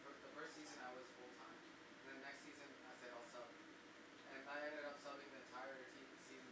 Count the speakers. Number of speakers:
1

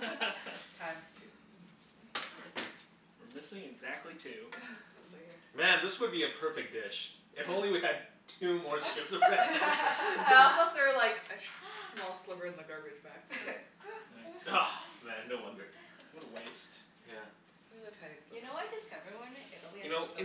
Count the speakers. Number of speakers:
4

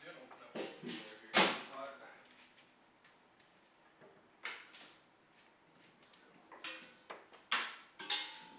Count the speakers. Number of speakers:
1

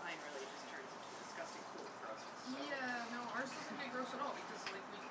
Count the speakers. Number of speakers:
2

